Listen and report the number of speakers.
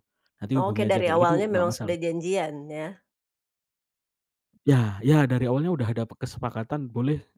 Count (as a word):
two